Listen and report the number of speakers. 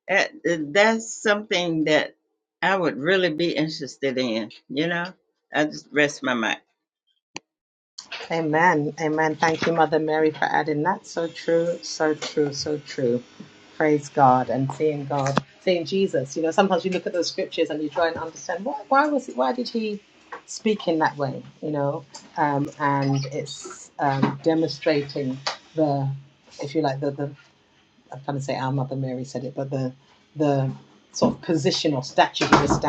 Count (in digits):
2